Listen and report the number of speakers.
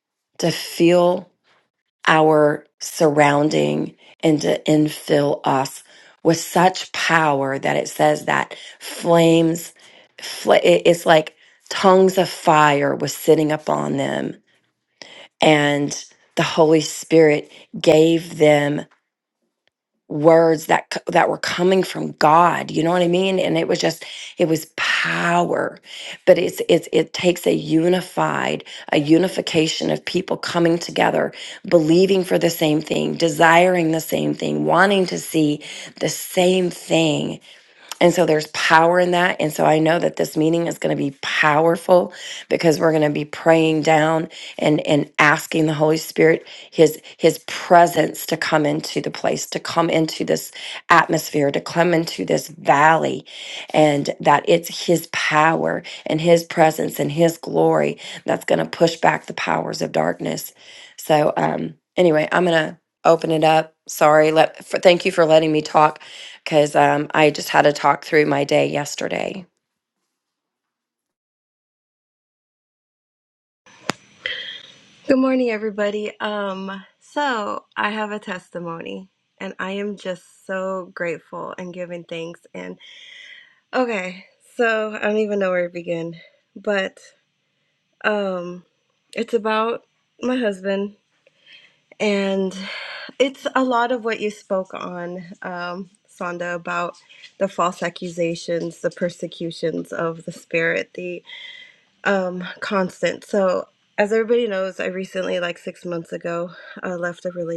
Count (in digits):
2